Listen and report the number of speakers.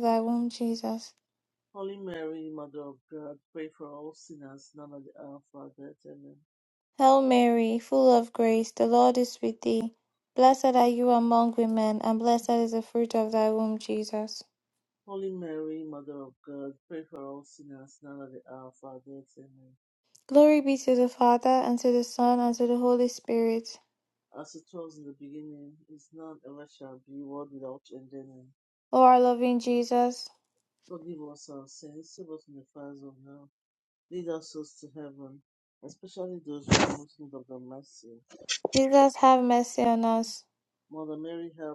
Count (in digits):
2